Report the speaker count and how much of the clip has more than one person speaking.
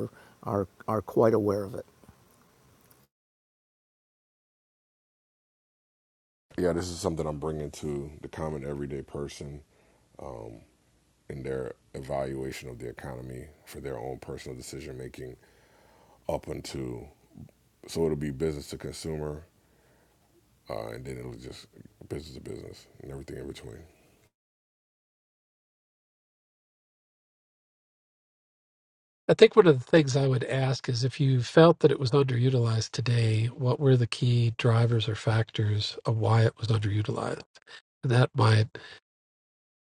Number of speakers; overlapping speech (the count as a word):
three, no overlap